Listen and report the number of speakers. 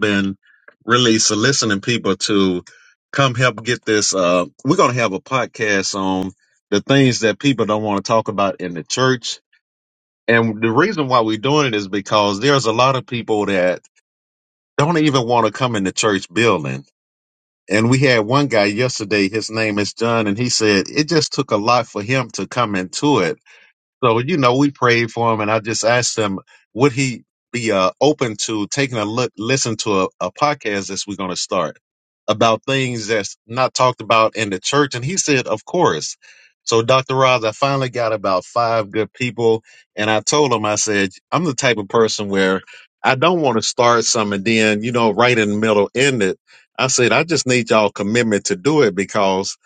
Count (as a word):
one